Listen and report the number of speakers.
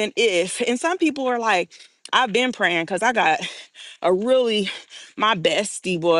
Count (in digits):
1